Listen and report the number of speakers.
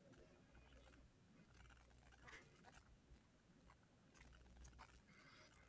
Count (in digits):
0